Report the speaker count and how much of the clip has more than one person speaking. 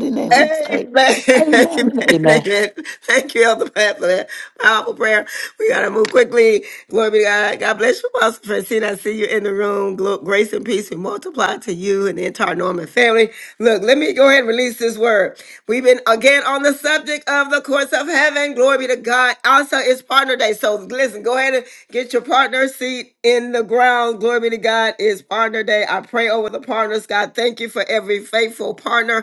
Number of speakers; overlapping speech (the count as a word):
two, about 5%